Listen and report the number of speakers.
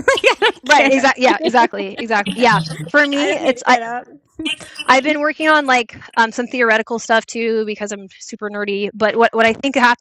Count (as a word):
two